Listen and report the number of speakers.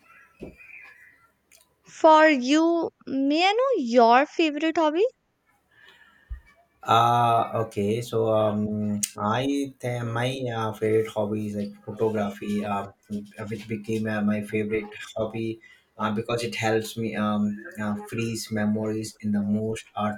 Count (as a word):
two